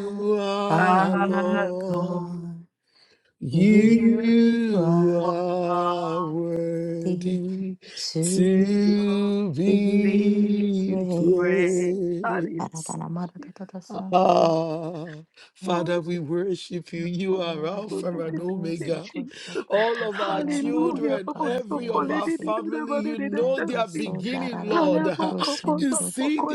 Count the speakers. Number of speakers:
three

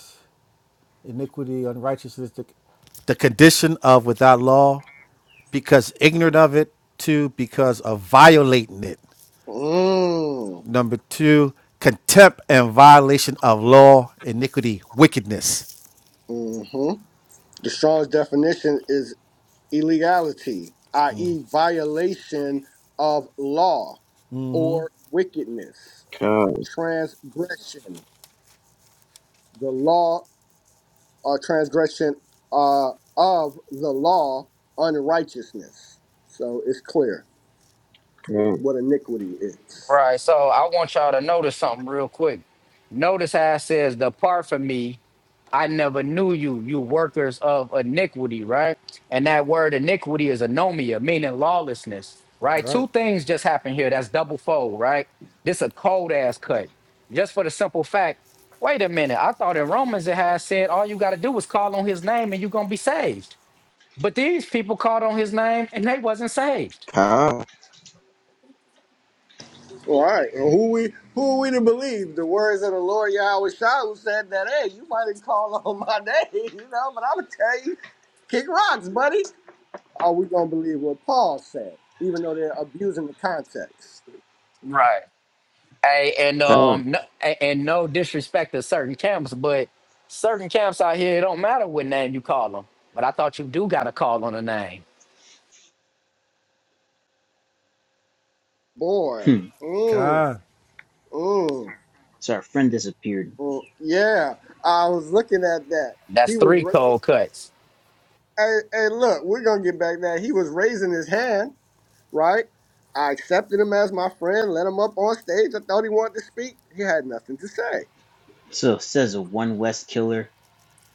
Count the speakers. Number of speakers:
five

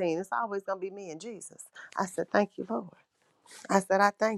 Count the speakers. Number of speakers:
one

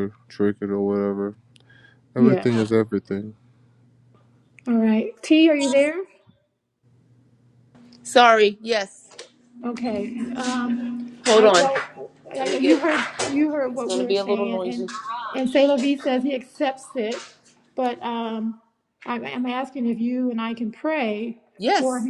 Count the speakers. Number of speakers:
three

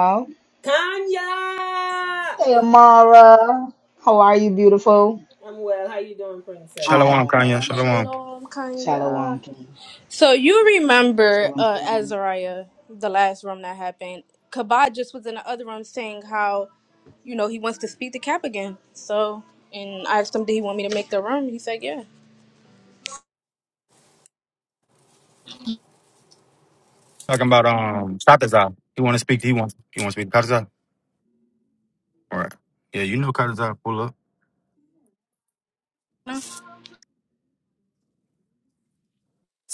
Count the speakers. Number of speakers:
four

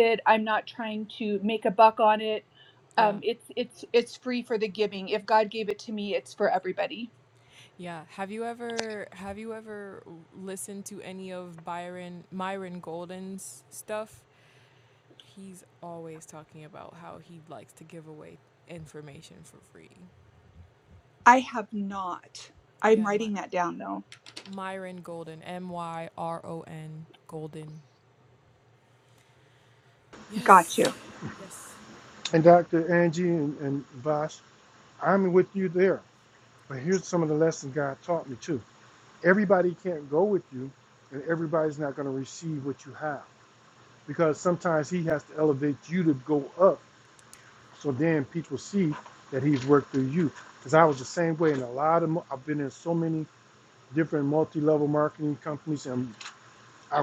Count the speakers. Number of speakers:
three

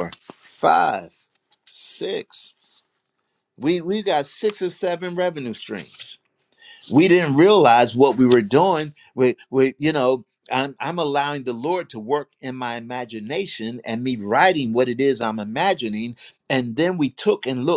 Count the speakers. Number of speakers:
one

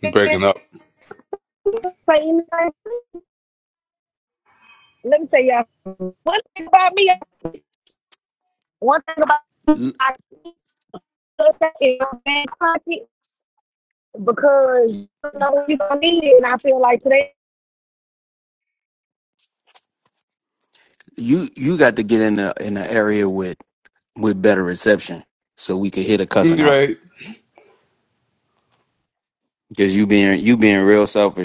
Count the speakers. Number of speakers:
three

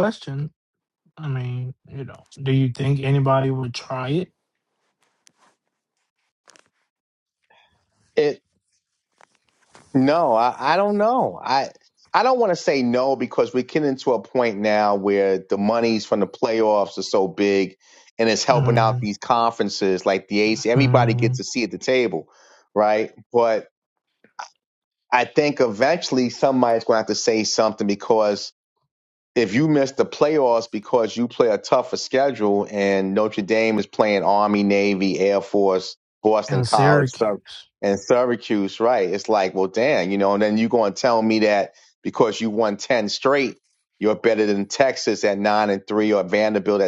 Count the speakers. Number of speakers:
two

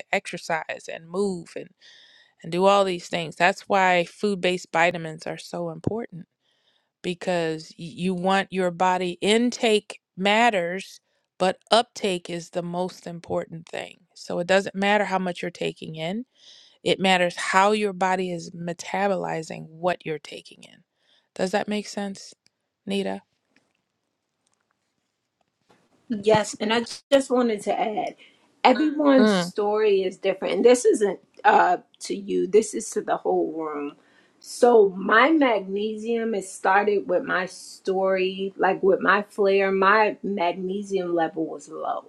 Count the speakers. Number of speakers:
two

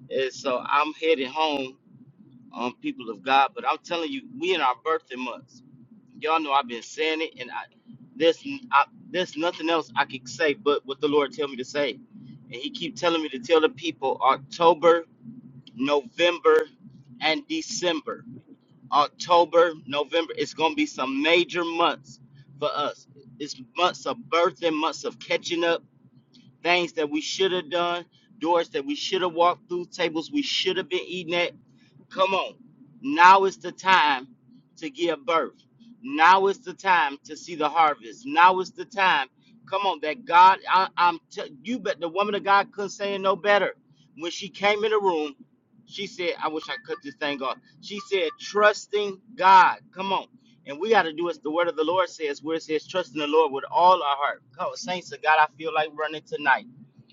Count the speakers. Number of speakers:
one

